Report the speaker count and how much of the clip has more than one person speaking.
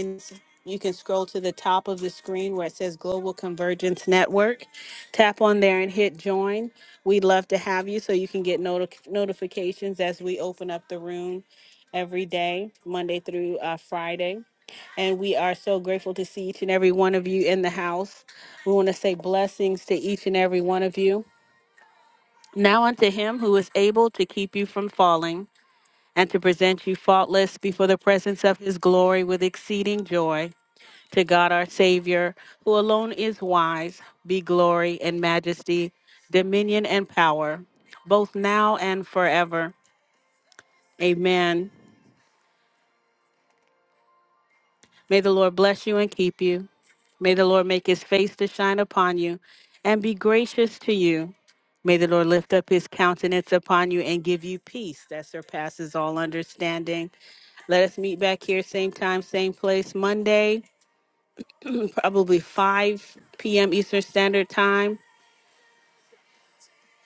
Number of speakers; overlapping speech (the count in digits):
1, no overlap